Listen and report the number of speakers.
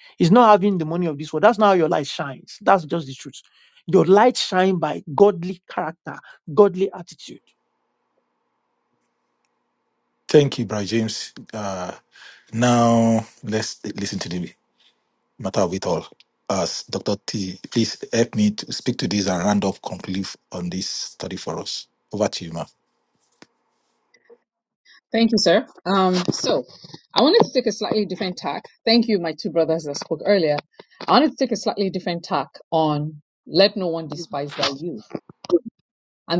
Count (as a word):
three